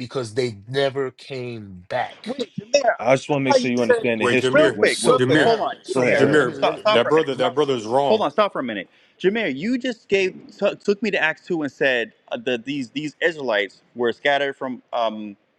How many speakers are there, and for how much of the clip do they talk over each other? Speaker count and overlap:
four, about 30%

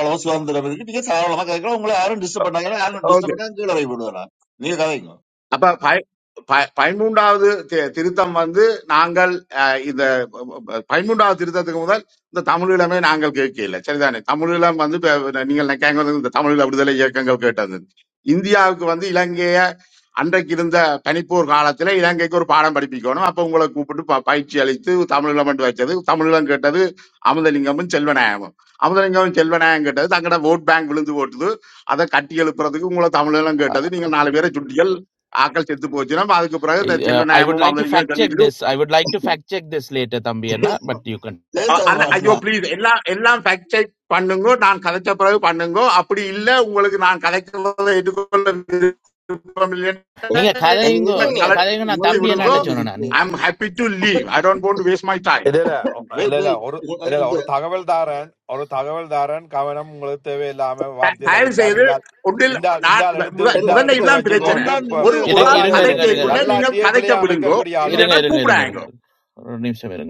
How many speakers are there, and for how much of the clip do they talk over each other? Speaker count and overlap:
four, about 17%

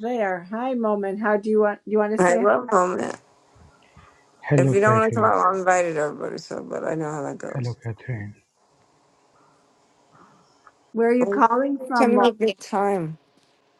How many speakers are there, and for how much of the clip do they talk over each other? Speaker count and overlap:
three, about 16%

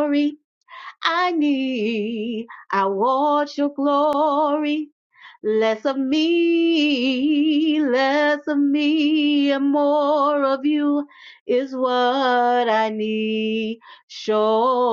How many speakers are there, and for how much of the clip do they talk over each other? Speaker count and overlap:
one, no overlap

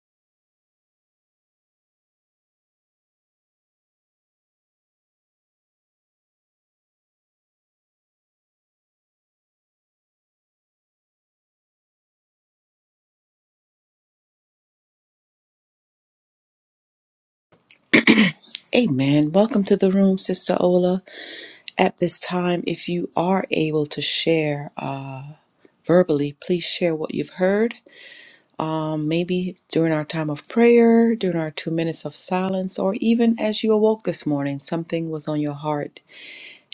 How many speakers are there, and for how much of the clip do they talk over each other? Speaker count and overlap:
one, no overlap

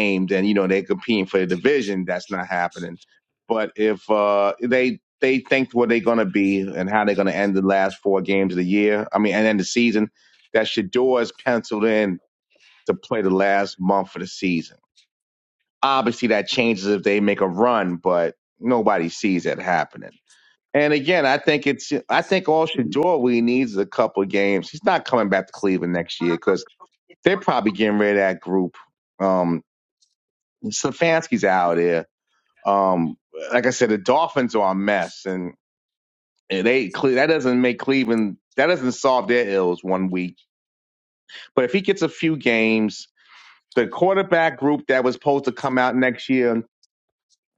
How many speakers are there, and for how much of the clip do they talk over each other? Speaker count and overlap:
one, no overlap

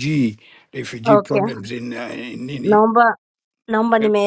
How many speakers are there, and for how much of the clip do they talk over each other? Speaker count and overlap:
two, about 14%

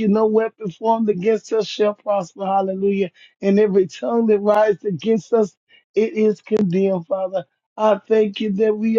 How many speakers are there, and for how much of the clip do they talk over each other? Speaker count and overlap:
one, no overlap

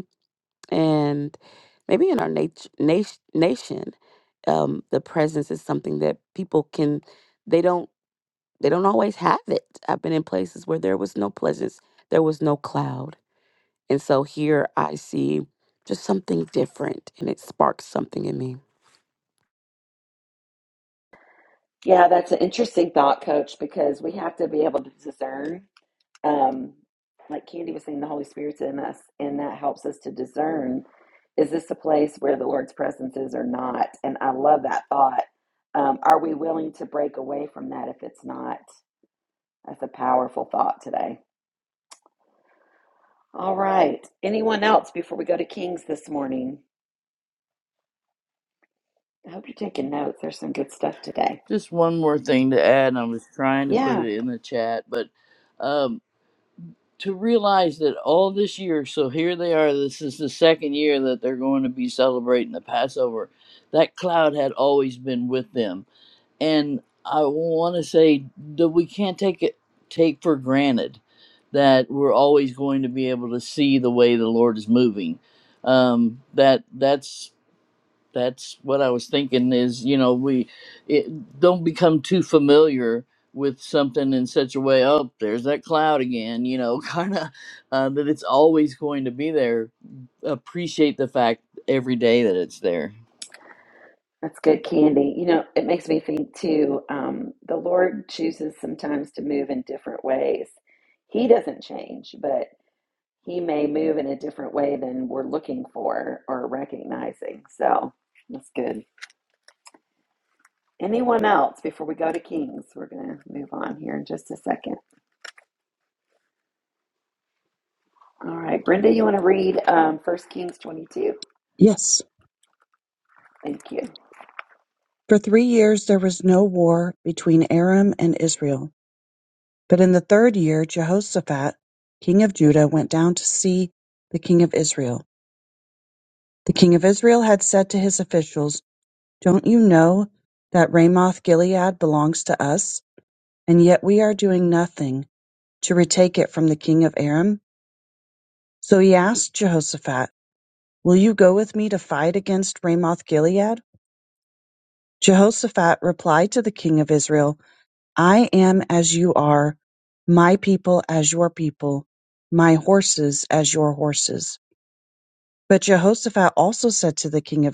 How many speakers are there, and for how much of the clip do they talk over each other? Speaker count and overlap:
four, under 1%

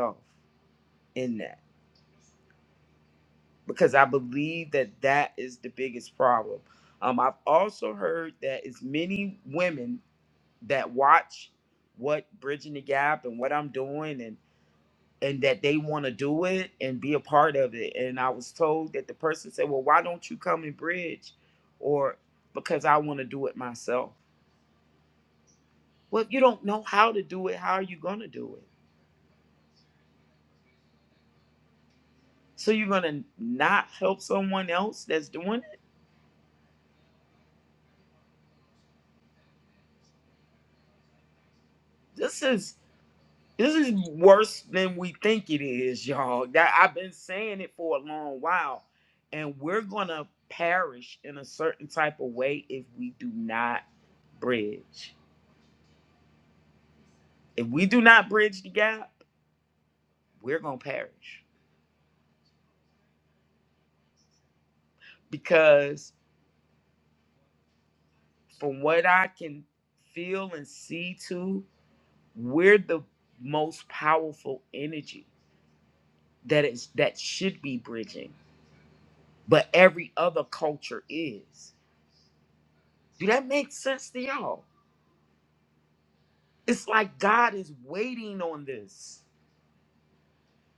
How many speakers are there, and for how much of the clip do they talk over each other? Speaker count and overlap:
one, no overlap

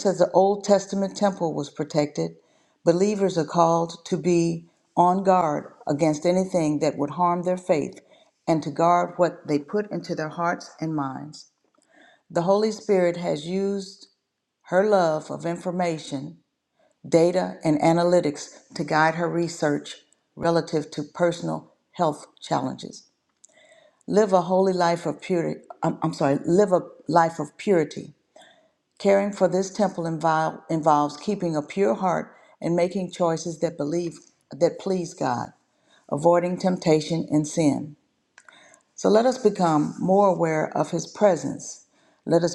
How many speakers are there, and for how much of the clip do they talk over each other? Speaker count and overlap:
one, no overlap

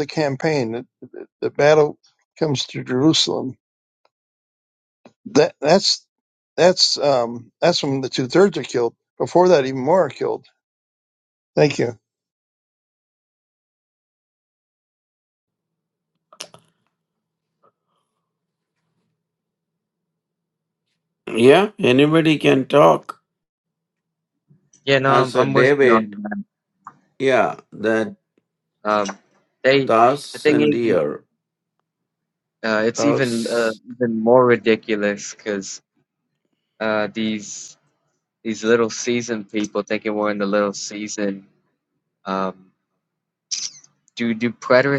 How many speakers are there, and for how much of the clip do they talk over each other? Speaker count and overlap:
three, about 4%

